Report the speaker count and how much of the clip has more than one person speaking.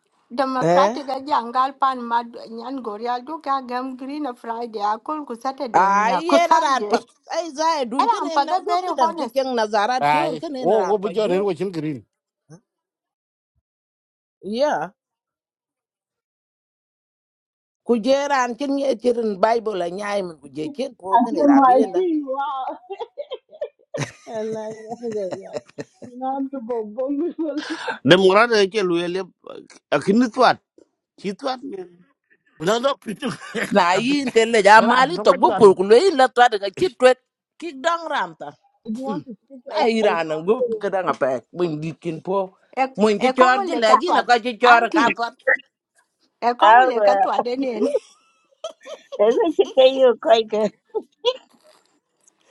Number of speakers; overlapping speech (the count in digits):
6, about 18%